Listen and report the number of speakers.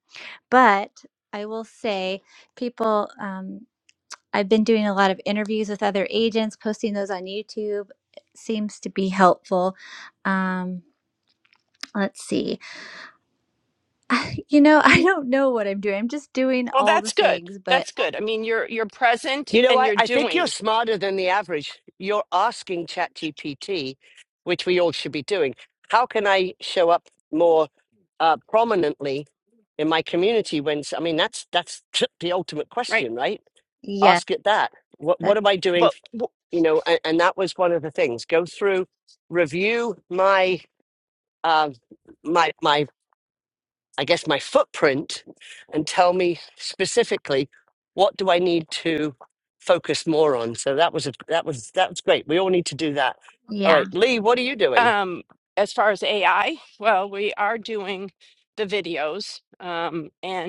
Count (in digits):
3